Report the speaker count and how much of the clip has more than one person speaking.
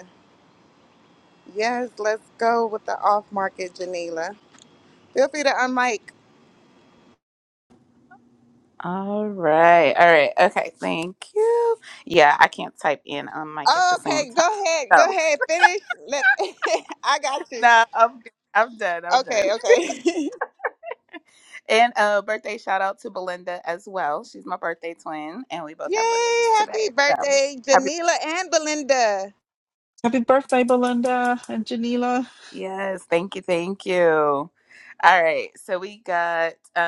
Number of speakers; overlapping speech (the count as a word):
three, about 7%